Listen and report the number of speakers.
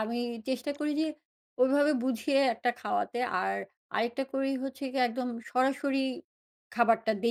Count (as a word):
one